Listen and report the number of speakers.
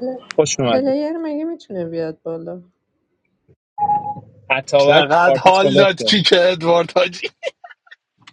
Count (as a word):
three